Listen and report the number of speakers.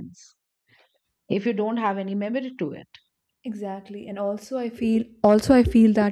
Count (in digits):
2